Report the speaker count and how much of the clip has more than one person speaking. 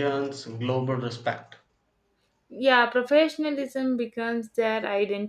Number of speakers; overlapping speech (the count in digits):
2, no overlap